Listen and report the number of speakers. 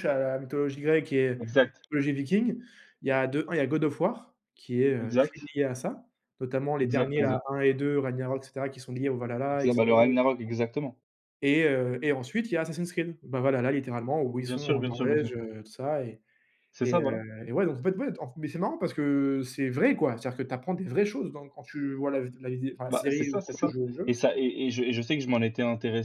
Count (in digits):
2